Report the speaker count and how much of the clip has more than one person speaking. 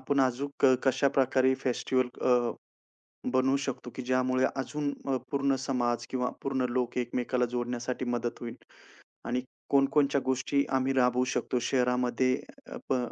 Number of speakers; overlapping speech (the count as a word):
one, no overlap